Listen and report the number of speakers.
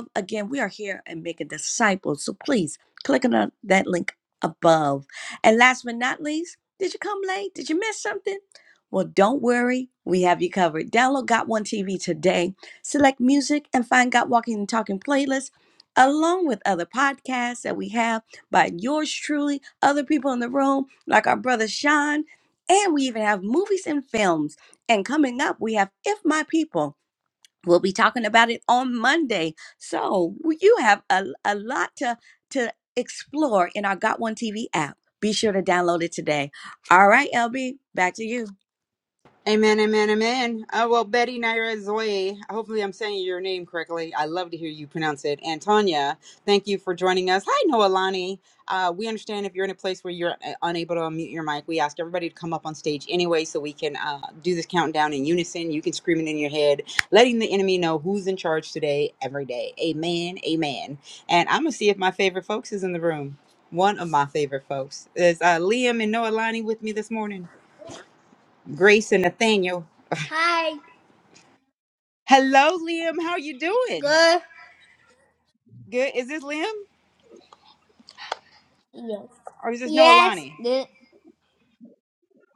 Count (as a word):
three